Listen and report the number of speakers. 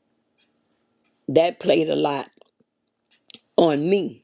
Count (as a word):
one